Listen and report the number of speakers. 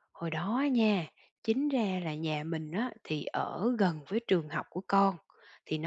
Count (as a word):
one